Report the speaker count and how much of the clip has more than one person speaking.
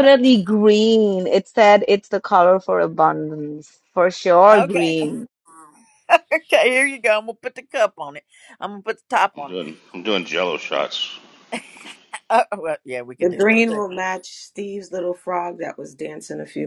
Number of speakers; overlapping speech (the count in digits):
4, about 7%